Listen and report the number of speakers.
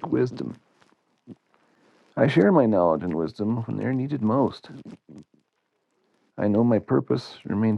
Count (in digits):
1